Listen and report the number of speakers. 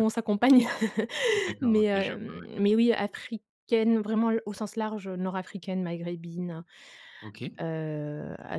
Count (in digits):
2